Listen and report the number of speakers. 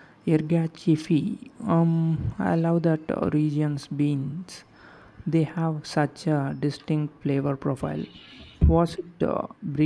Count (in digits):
1